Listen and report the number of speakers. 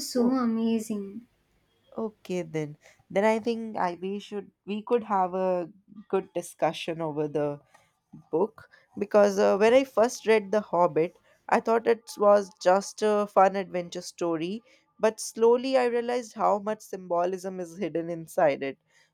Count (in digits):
2